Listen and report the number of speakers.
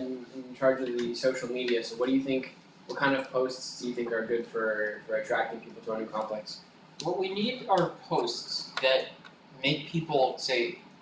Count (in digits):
2